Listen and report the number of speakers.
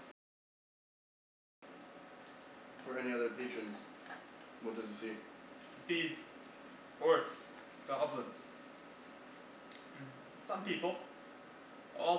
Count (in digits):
2